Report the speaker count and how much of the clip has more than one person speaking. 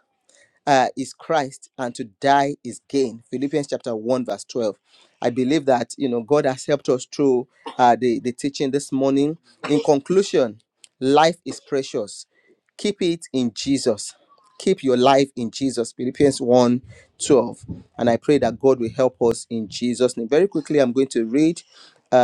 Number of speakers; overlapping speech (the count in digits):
1, no overlap